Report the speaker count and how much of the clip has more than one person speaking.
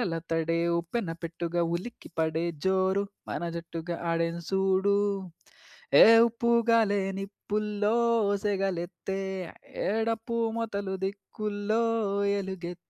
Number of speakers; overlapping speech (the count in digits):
1, no overlap